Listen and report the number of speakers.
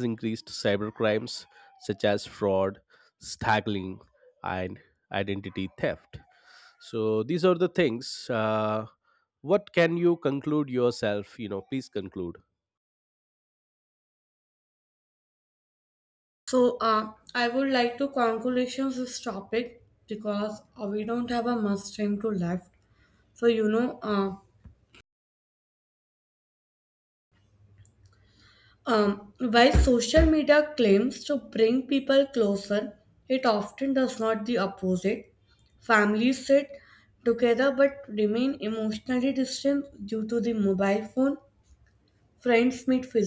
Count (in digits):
2